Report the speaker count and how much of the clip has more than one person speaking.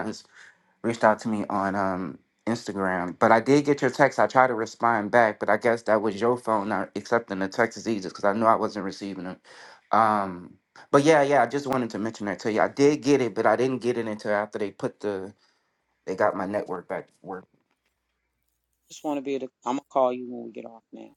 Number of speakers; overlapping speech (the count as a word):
two, no overlap